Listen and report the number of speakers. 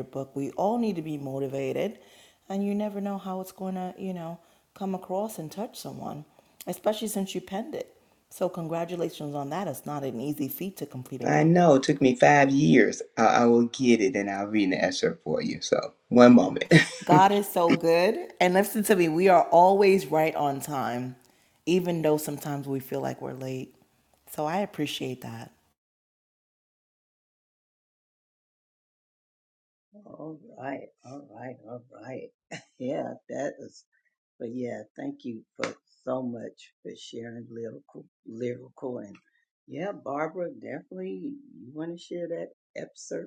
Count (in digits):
3